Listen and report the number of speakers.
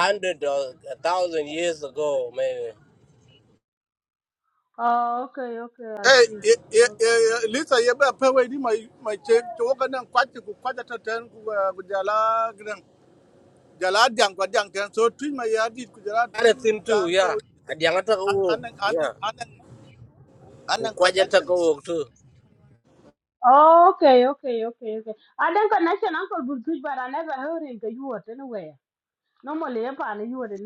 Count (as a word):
three